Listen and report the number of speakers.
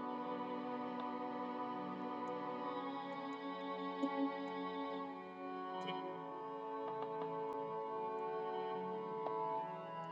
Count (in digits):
0